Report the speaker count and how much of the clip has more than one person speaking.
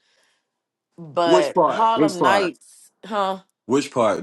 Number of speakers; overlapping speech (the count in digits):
2, about 29%